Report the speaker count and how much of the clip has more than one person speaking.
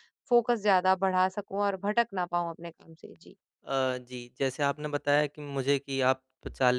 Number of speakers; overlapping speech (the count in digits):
2, no overlap